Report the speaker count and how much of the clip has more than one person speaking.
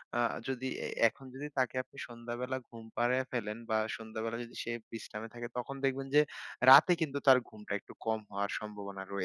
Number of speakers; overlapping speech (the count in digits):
1, no overlap